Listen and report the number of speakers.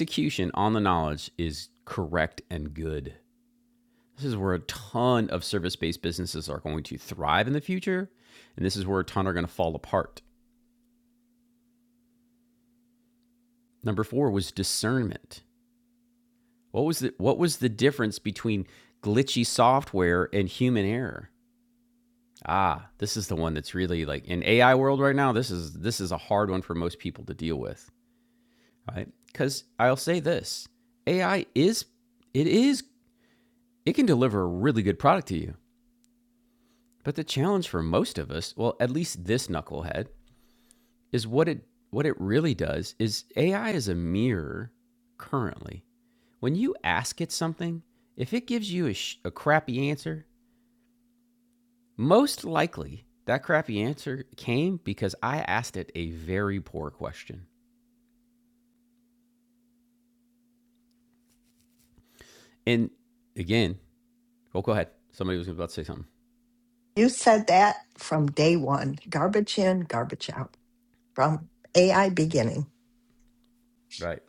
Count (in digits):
2